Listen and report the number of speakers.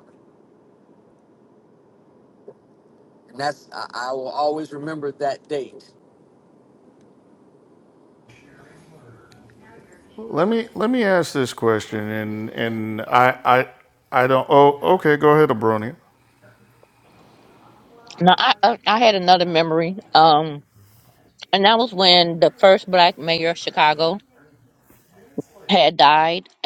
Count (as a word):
three